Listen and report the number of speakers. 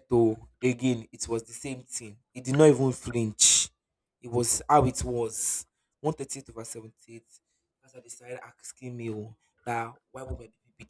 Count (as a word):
one